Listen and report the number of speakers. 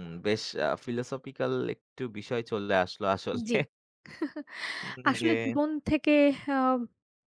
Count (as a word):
two